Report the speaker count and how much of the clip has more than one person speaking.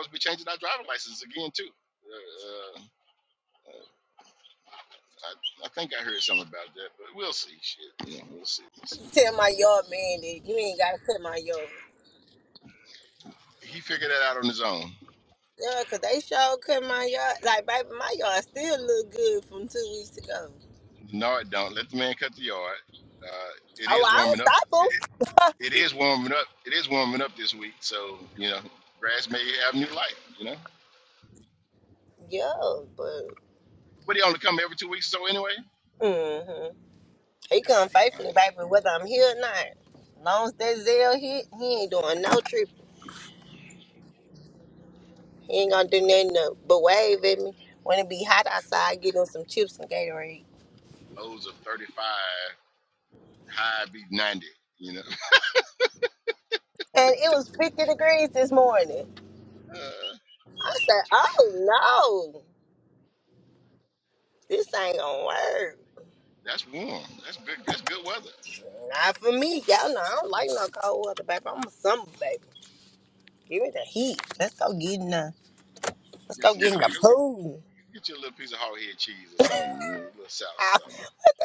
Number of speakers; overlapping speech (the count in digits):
2, about 3%